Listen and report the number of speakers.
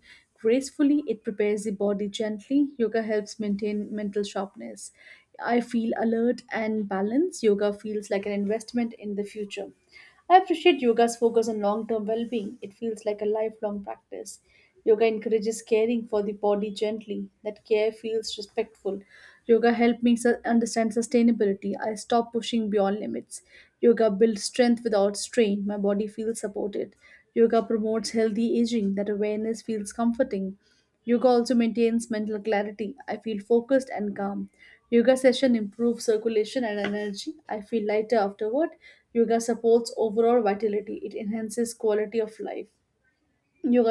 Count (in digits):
1